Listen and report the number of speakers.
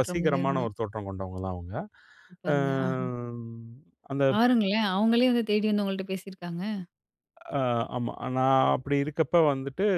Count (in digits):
2